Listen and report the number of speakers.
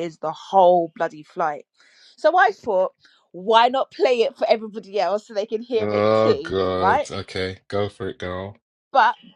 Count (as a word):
two